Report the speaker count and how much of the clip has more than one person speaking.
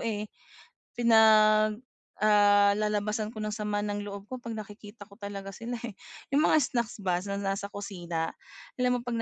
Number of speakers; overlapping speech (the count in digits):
1, no overlap